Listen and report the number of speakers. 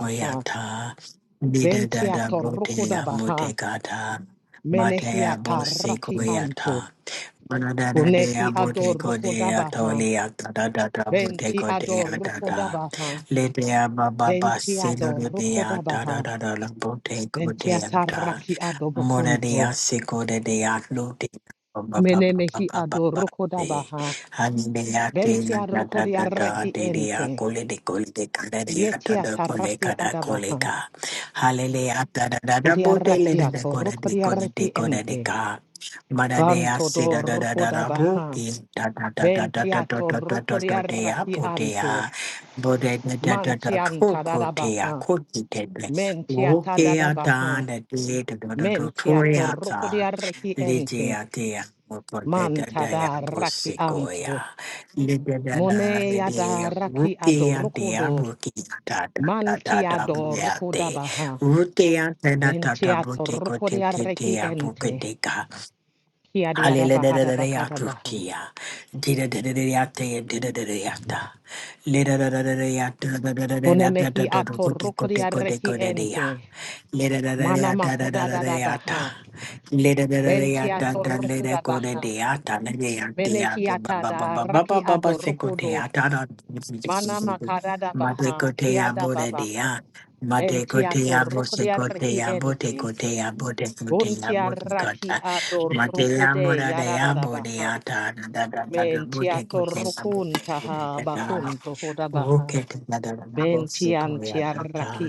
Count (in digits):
2